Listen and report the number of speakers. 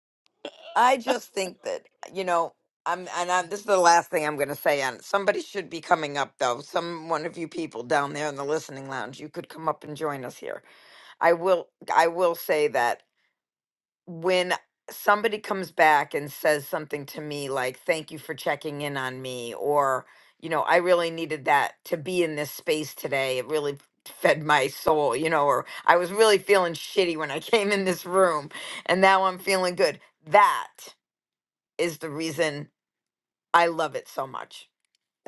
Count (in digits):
1